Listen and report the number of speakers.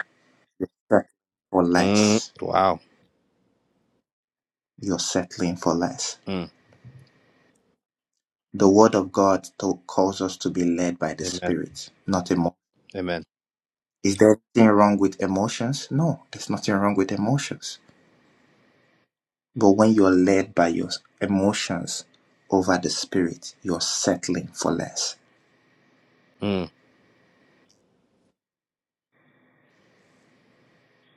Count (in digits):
2